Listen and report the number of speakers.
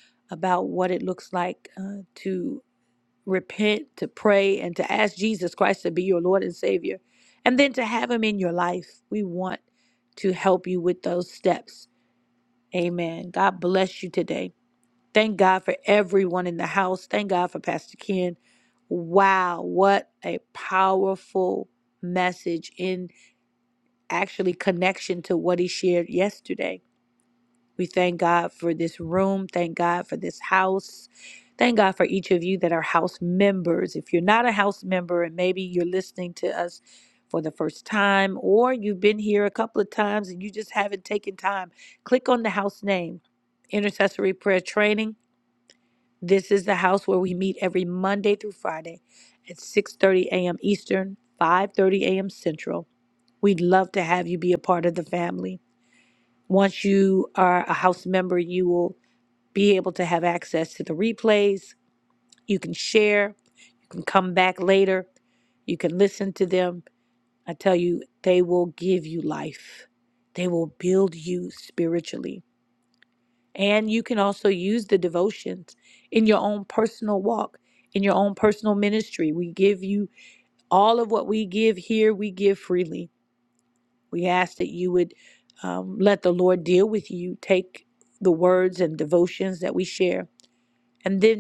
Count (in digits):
1